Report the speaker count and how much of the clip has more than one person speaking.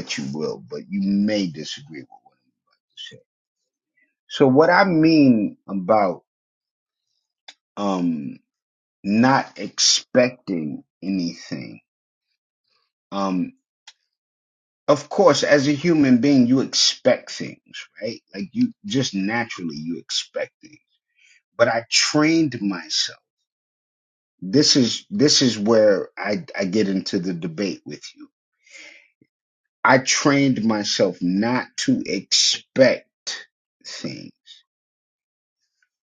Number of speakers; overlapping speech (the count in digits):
1, no overlap